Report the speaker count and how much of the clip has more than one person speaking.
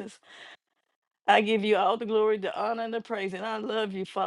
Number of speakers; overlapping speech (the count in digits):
1, no overlap